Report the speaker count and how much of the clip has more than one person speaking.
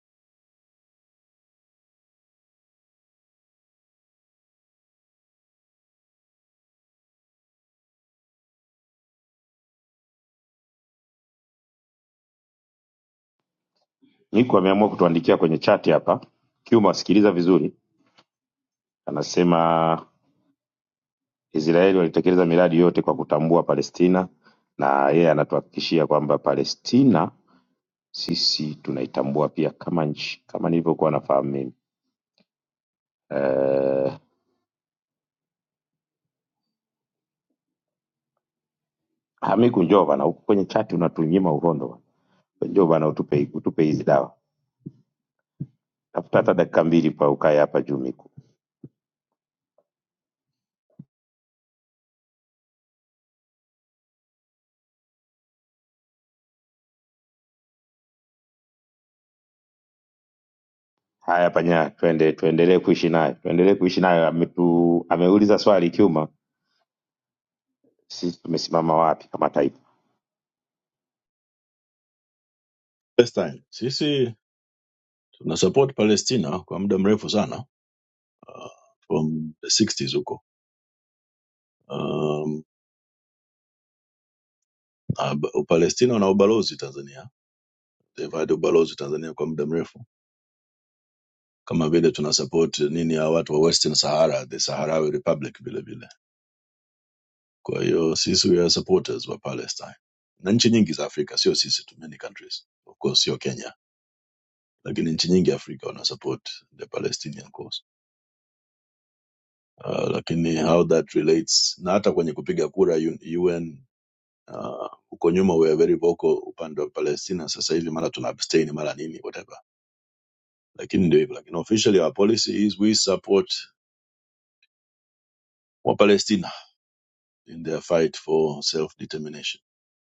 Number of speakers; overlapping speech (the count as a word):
two, no overlap